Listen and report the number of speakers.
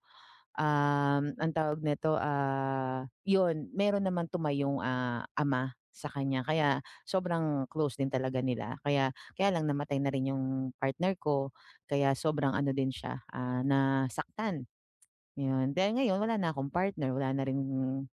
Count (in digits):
1